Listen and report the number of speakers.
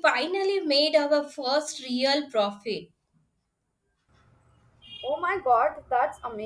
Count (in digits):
2